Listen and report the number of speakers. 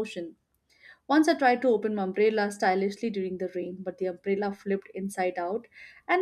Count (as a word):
one